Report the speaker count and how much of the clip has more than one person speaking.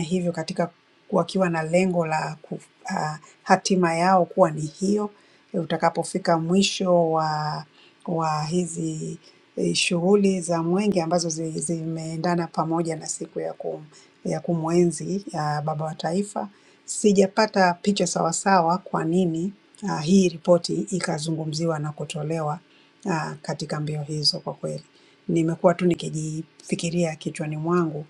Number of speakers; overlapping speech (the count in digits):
1, no overlap